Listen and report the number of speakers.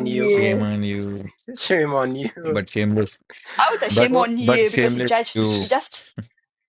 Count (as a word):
three